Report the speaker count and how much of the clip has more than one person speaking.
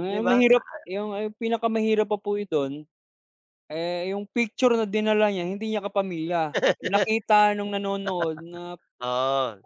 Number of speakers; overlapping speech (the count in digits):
2, about 8%